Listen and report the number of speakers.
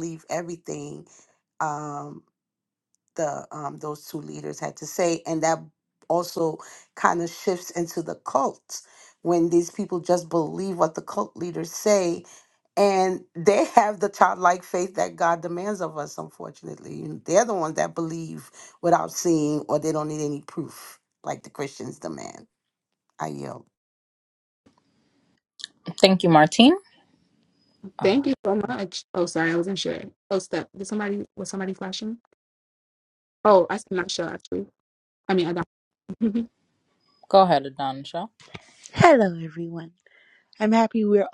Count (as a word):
four